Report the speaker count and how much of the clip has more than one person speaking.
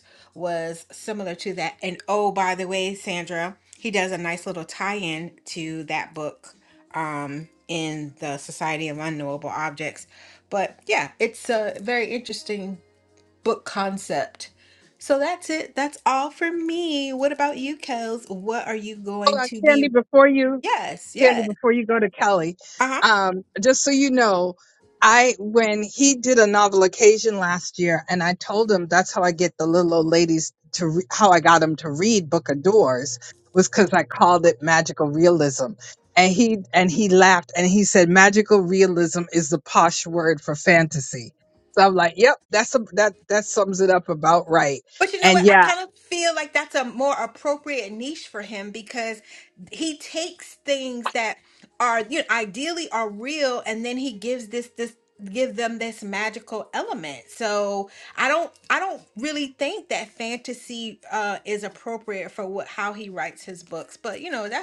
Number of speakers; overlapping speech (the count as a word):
two, about 2%